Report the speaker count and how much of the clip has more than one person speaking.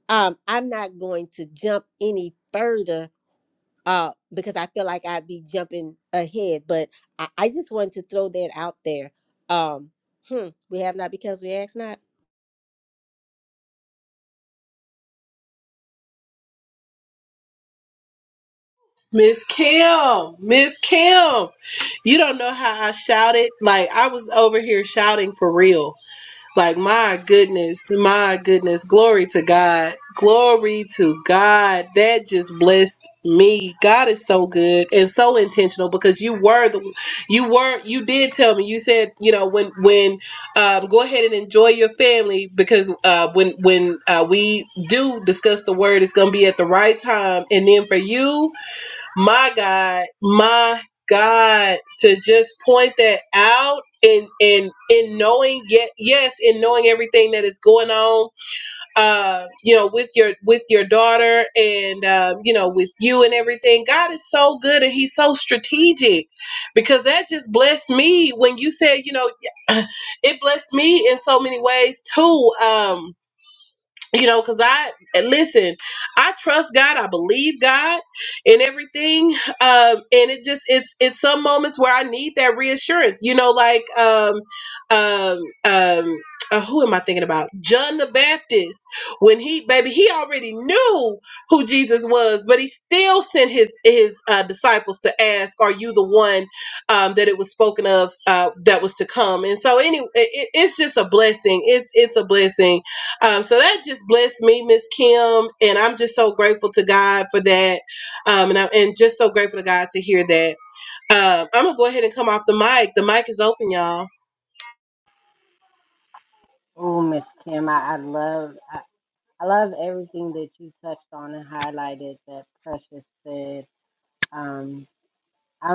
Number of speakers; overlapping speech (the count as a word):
three, no overlap